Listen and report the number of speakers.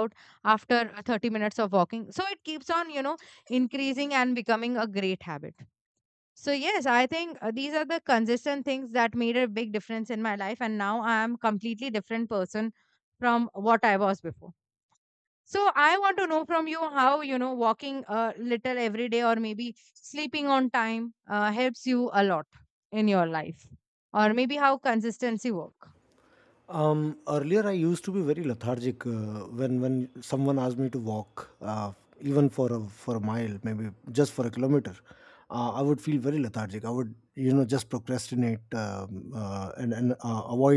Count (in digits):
2